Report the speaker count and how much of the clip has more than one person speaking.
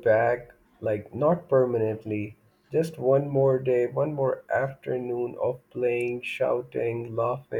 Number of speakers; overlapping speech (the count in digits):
1, no overlap